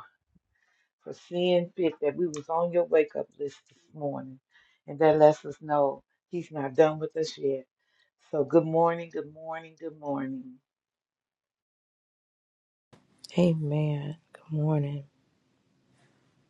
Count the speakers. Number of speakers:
2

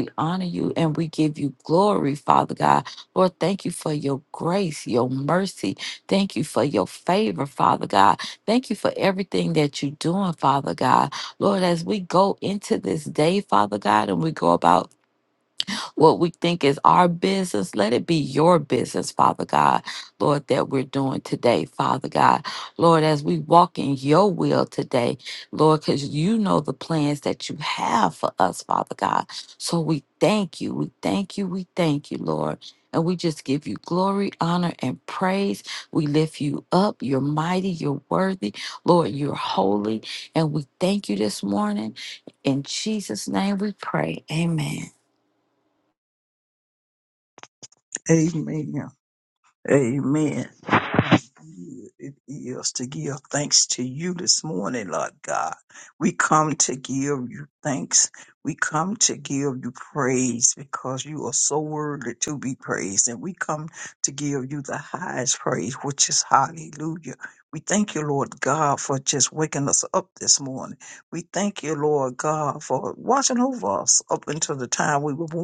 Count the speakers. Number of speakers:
2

